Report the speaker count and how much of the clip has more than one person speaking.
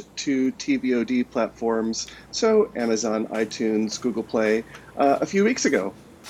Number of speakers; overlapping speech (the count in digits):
1, no overlap